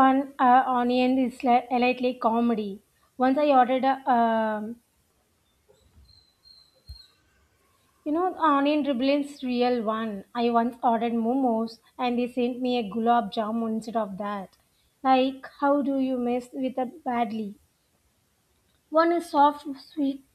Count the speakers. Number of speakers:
one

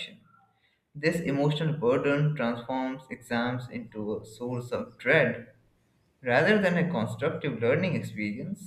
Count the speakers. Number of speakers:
one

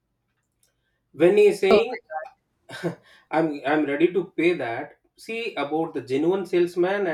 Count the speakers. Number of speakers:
one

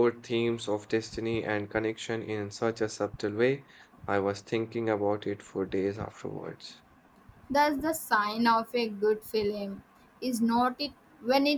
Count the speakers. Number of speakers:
two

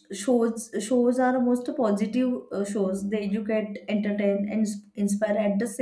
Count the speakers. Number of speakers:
one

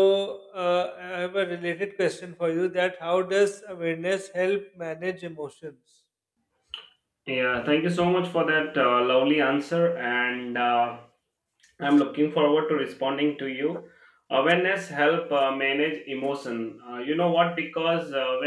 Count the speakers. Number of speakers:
two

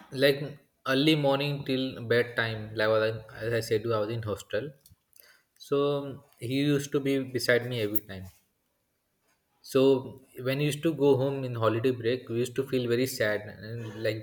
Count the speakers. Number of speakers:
one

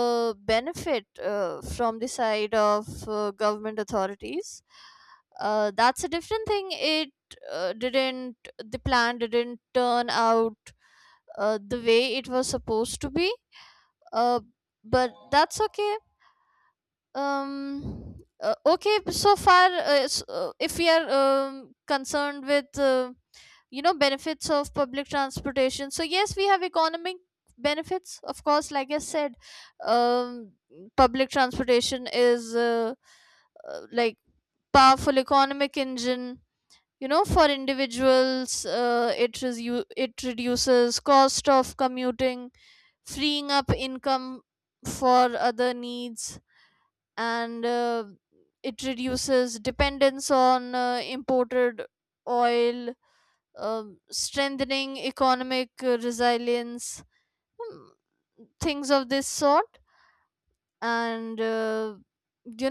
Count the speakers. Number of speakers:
one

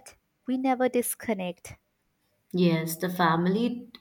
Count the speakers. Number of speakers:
two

